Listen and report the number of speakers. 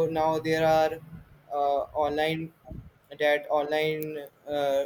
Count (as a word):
one